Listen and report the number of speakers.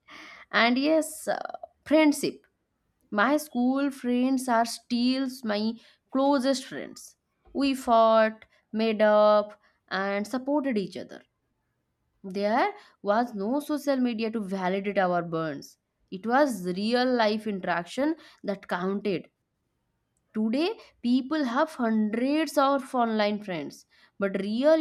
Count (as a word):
one